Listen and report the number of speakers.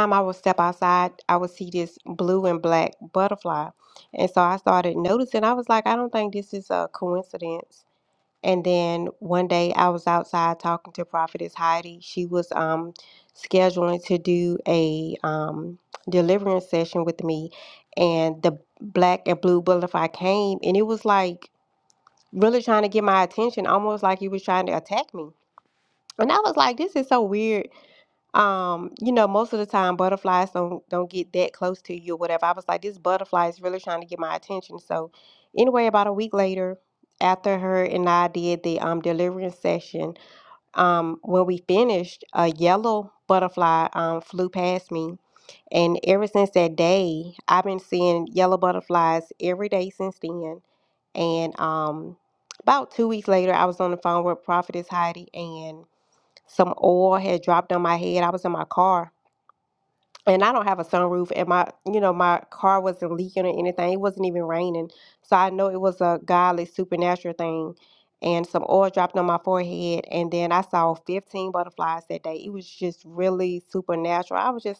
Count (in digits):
1